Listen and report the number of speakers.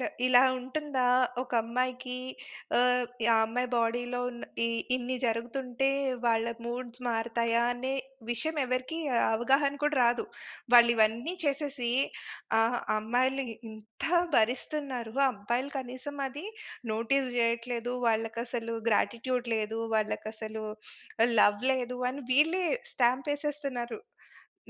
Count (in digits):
1